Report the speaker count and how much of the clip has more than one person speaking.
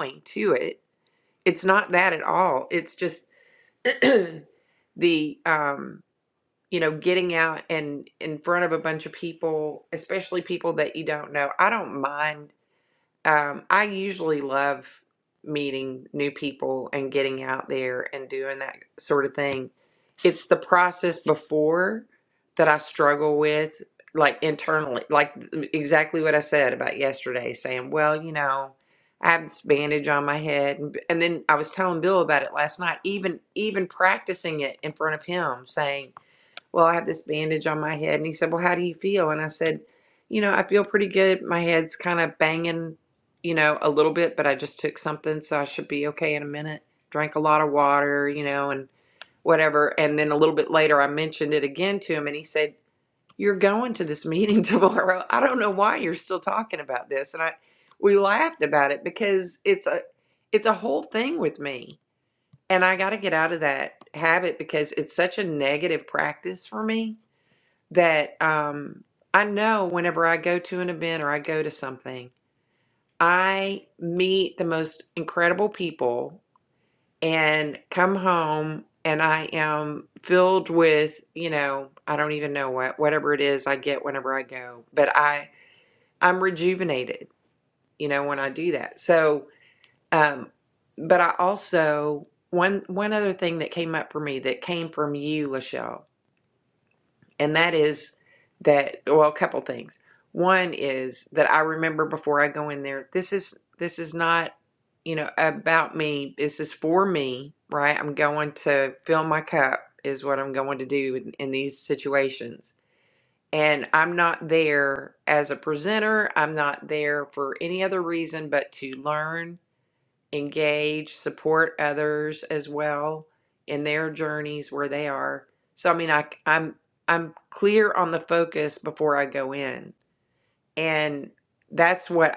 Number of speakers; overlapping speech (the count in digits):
1, no overlap